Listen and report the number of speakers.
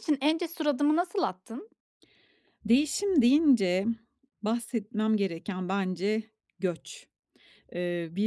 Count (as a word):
two